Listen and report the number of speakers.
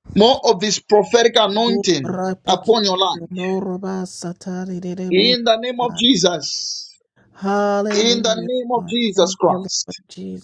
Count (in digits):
2